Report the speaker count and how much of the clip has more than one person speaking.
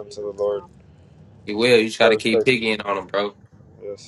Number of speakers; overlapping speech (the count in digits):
2, about 16%